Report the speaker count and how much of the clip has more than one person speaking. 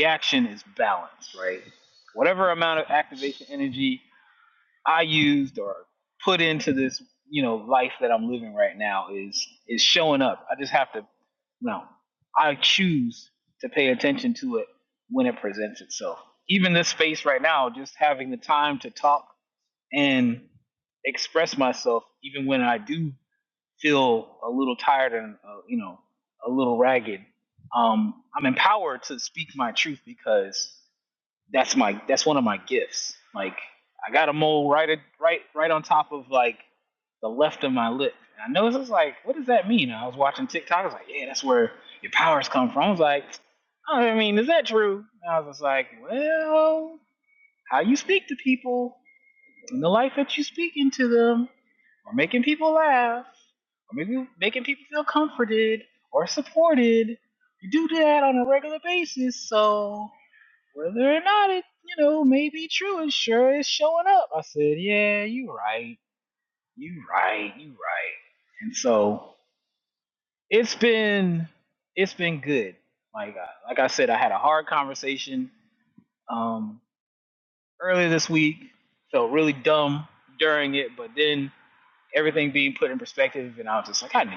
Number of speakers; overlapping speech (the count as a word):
one, no overlap